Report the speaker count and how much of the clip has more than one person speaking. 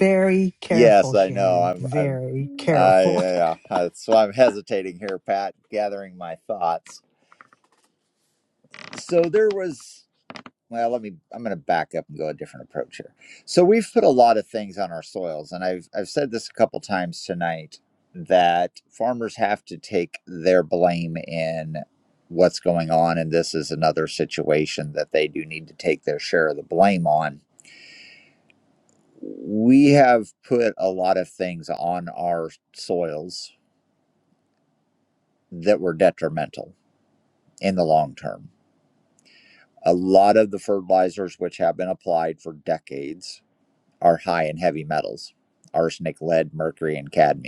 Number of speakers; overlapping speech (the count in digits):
2, about 4%